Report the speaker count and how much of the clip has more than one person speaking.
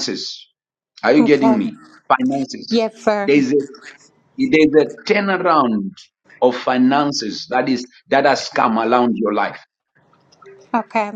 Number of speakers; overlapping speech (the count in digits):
2, about 4%